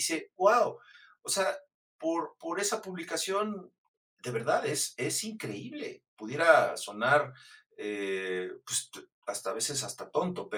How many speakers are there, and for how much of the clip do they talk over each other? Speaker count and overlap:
1, no overlap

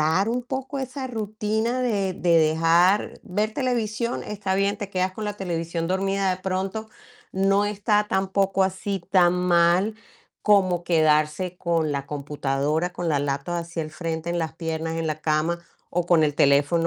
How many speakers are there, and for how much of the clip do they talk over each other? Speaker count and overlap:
1, no overlap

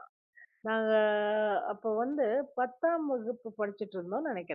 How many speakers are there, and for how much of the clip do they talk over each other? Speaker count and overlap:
1, no overlap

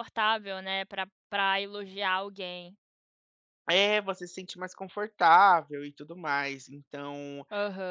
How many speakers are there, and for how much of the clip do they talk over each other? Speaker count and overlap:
2, no overlap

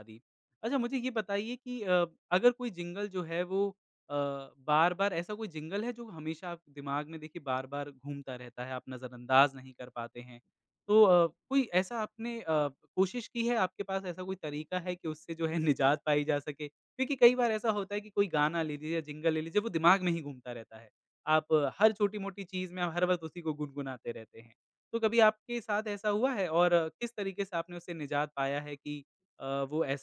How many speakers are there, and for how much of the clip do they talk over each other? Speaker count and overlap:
1, no overlap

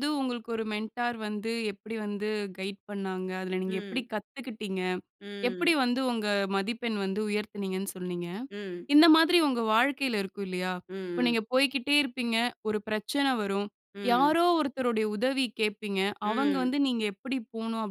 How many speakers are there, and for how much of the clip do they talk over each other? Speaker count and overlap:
2, about 9%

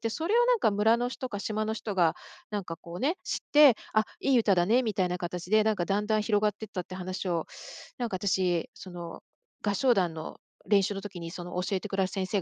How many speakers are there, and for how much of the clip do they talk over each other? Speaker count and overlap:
1, no overlap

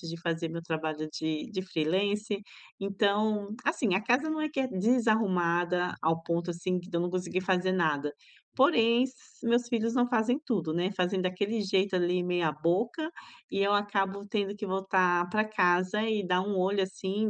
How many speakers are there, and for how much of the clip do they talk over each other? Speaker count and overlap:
1, no overlap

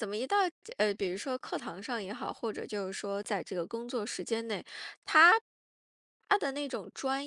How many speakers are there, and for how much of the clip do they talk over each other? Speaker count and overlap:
1, no overlap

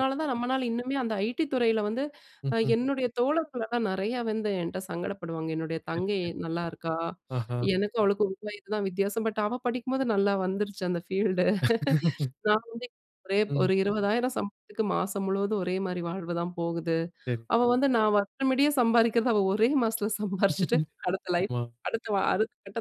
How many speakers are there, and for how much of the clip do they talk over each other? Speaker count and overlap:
2, about 3%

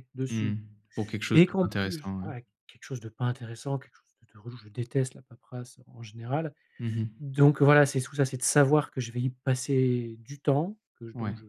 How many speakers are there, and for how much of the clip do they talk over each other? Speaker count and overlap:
2, about 13%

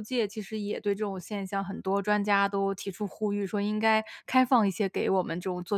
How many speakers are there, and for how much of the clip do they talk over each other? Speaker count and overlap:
1, no overlap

